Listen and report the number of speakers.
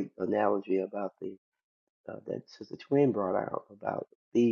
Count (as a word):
one